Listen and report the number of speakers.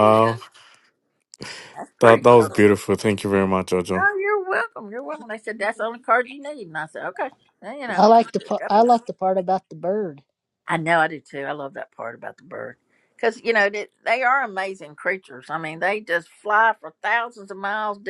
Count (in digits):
3